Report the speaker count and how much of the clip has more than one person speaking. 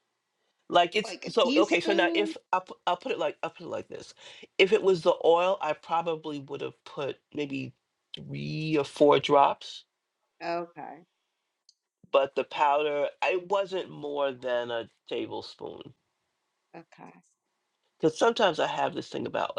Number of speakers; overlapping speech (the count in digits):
2, about 7%